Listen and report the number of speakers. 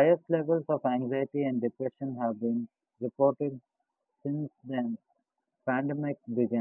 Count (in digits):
1